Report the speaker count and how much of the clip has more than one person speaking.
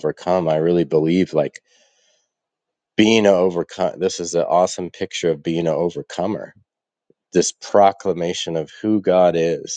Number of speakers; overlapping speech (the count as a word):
one, no overlap